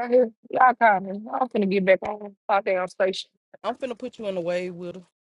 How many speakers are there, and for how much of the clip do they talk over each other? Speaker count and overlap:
2, no overlap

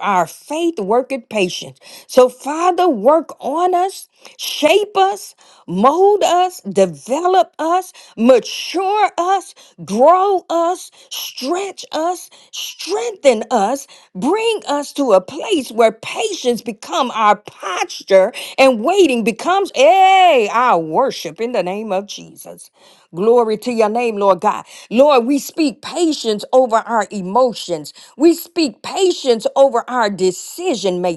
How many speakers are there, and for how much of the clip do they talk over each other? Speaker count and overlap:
1, no overlap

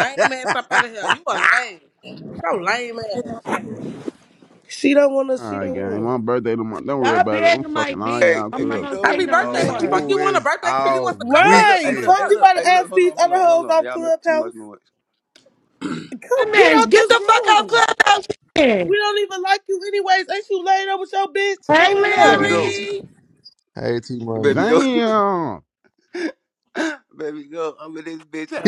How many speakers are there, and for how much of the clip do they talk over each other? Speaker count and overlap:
6, about 39%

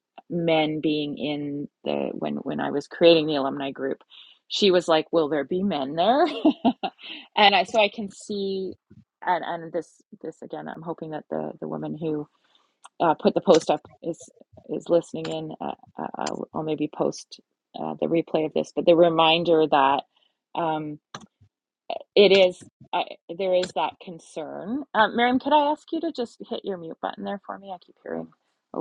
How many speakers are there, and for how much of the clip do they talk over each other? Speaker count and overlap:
1, no overlap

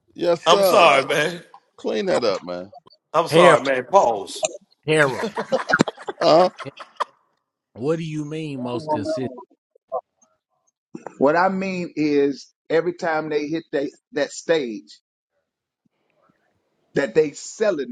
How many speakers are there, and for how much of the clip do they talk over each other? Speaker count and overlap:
4, about 4%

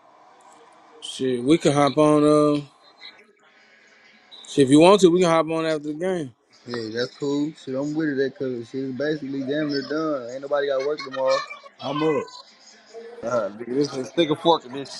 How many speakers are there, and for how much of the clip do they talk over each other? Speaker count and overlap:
3, no overlap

